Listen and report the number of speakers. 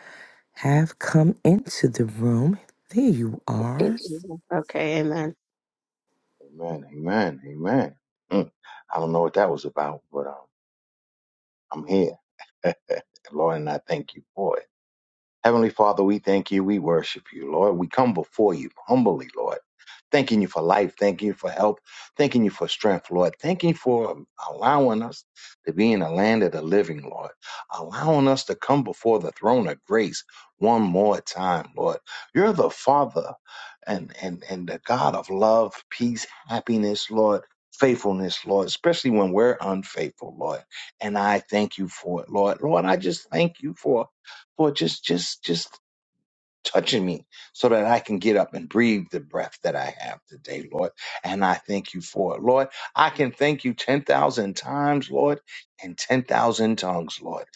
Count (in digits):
3